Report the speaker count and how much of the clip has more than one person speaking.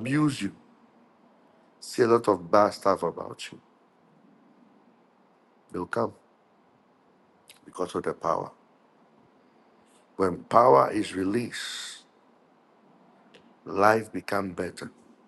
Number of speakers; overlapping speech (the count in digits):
1, no overlap